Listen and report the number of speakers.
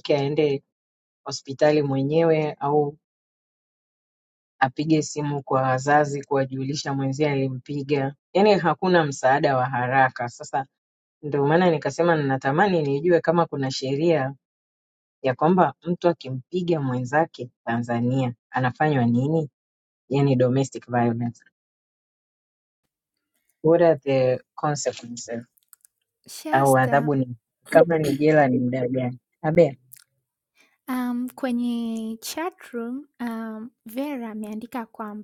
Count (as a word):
two